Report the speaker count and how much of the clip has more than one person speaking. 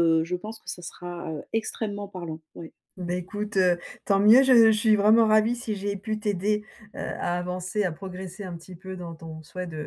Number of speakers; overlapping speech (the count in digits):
2, no overlap